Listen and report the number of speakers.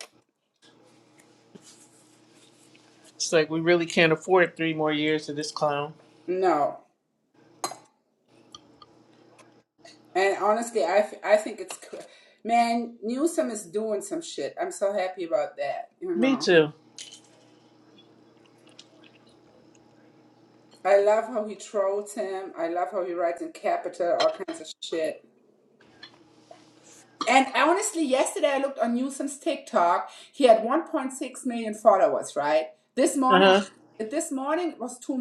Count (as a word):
two